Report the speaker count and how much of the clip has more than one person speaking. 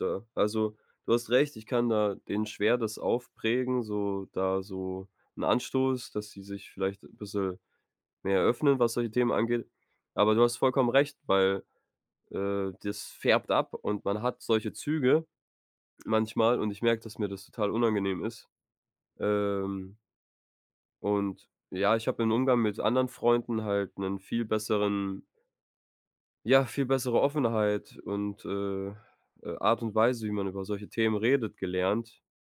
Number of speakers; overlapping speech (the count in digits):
1, no overlap